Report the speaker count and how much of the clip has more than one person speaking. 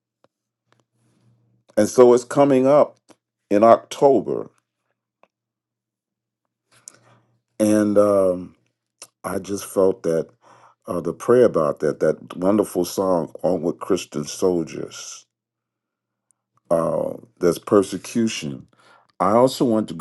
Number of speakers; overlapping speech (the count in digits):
1, no overlap